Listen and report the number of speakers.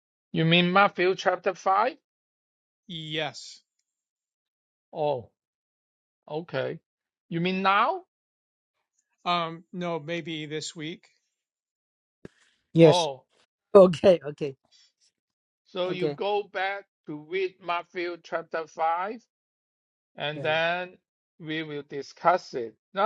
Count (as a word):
three